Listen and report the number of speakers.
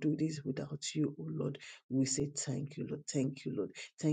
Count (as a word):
one